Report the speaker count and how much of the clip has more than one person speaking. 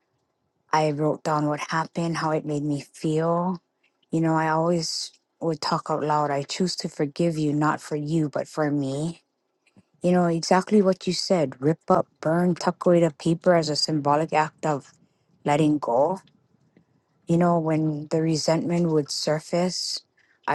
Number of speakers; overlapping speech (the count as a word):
one, no overlap